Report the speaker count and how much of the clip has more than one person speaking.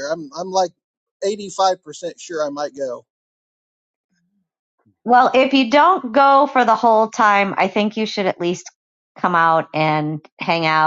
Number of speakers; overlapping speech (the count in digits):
2, no overlap